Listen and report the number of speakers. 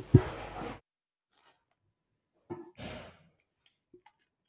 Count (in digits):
0